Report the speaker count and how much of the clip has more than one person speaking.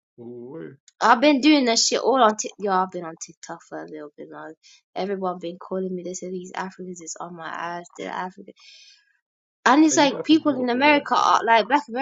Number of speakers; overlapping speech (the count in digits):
2, about 12%